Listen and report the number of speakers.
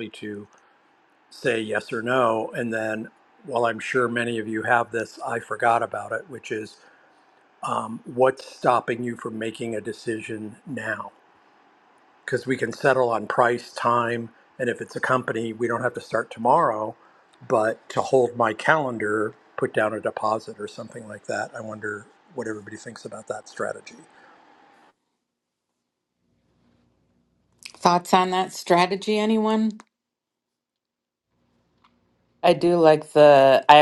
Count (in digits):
3